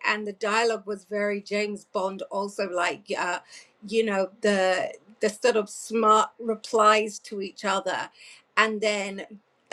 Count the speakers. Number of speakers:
one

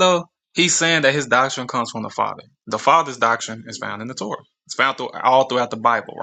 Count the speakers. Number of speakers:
one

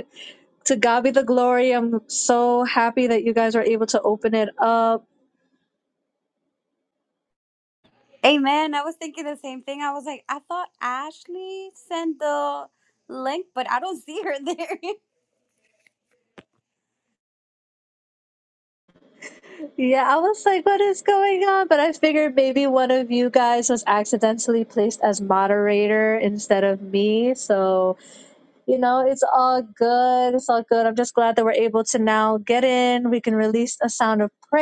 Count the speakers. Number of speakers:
two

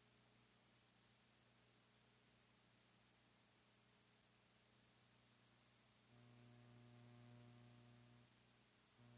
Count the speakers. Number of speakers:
zero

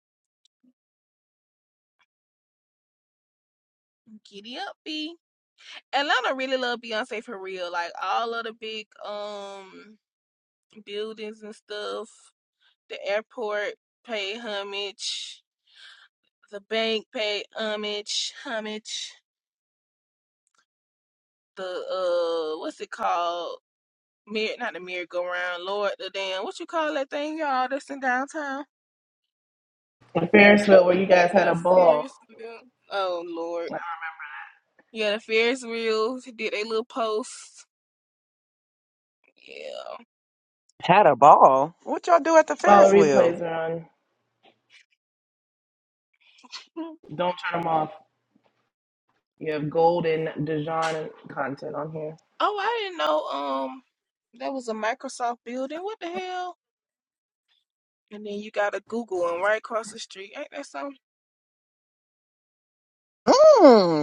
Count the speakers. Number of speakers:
three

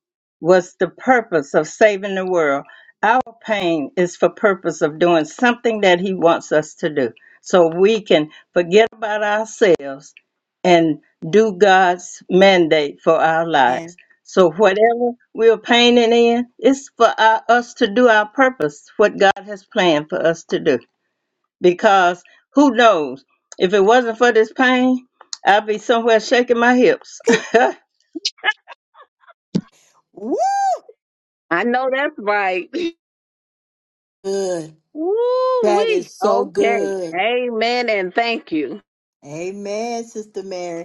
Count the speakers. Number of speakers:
three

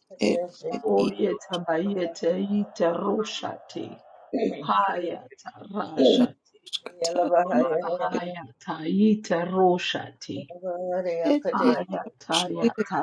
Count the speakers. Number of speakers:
three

